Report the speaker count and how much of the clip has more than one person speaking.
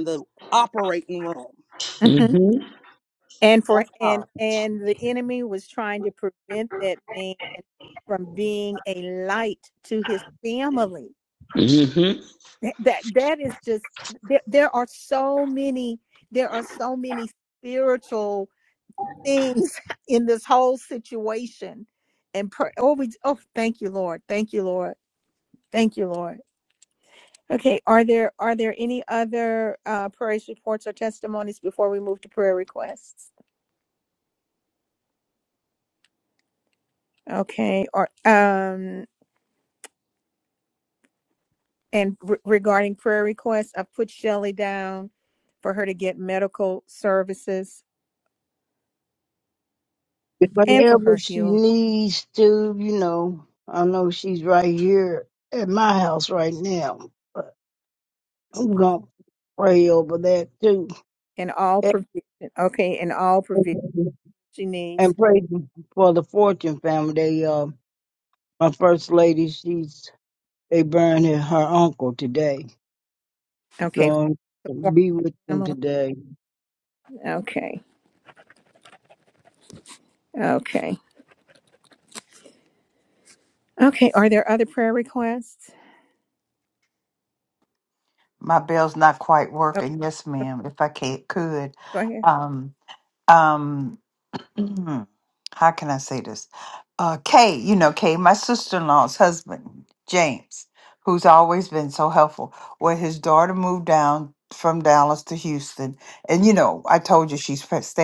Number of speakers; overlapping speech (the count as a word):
five, about 2%